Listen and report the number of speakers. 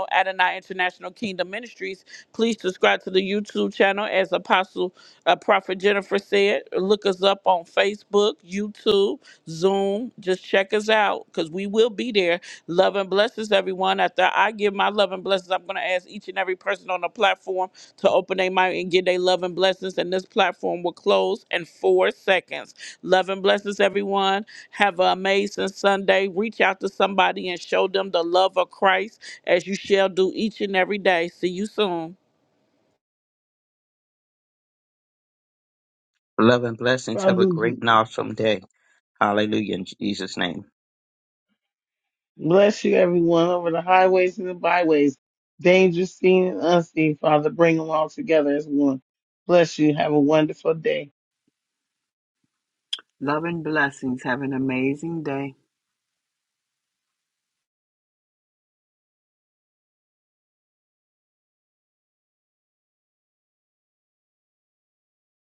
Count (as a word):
four